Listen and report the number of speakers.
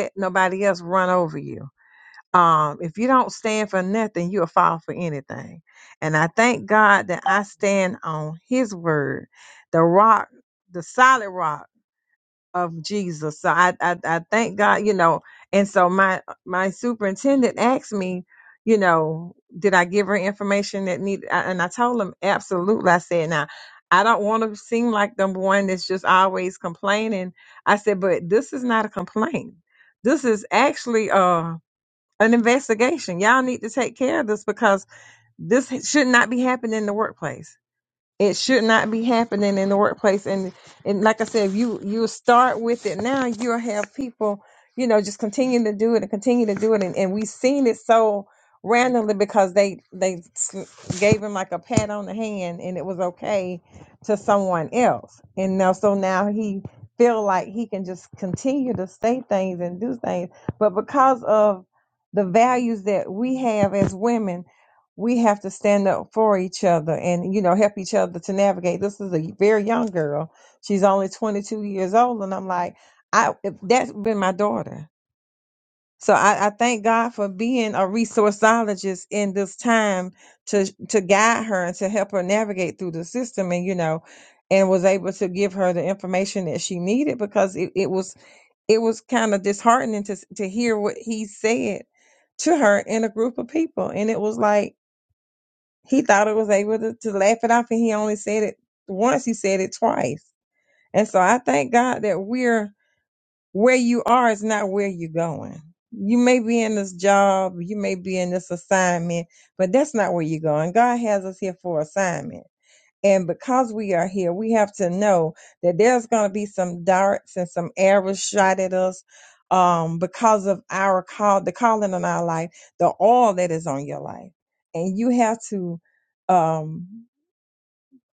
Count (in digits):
1